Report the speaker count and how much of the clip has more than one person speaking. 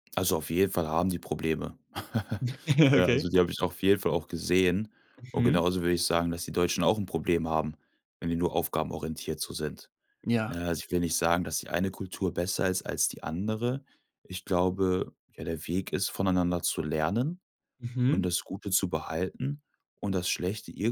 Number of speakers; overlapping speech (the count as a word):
two, about 4%